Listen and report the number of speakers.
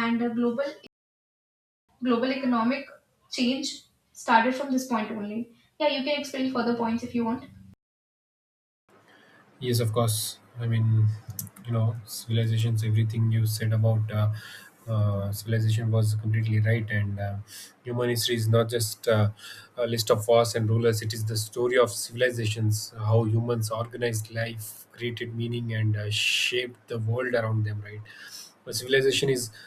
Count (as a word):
two